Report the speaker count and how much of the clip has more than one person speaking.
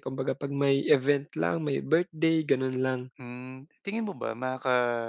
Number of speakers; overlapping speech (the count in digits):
2, no overlap